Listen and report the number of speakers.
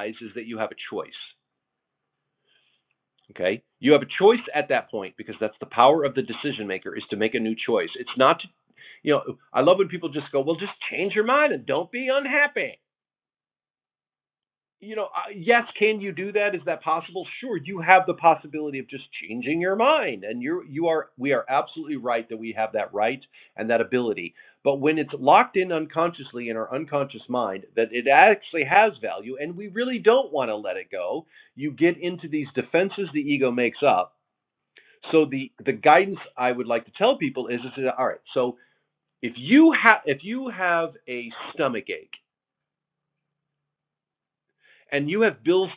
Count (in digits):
1